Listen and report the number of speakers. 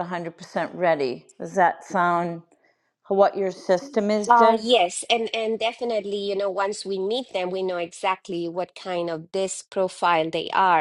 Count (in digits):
2